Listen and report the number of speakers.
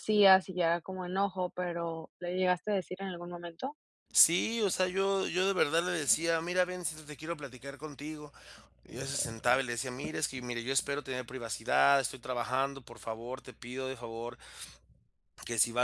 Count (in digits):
2